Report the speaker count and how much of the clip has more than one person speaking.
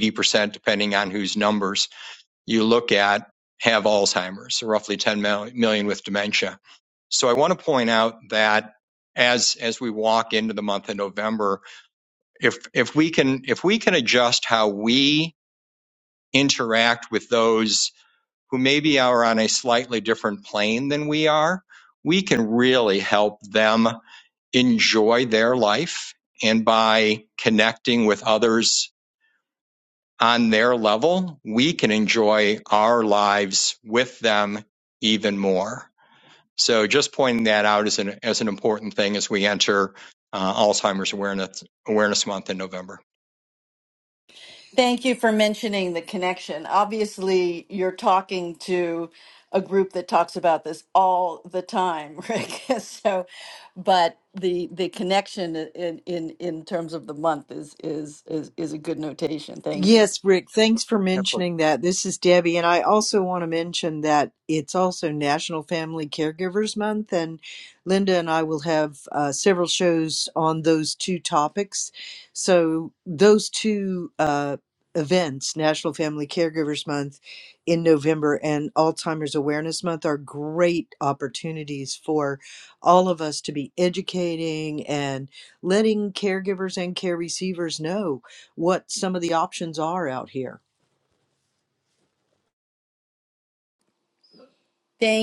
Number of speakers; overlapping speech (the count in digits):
3, under 1%